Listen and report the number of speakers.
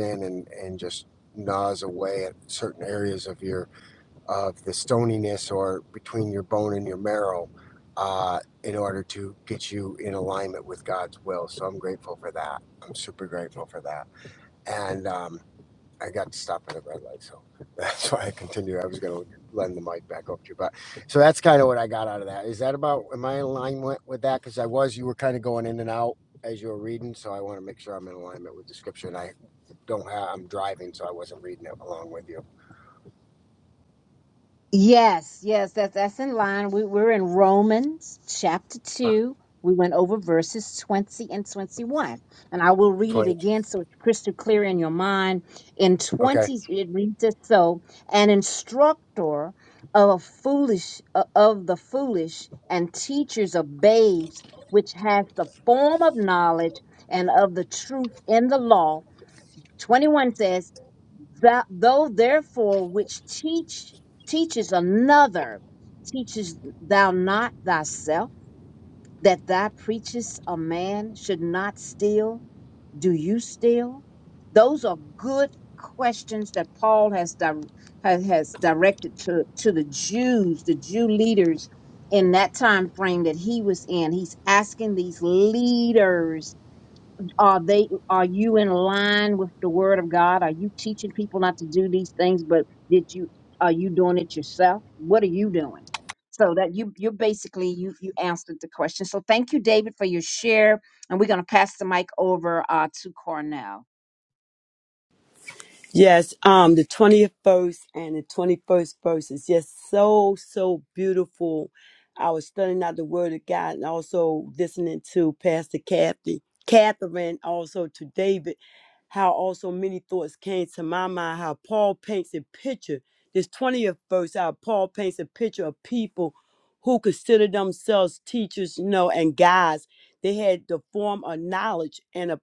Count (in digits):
3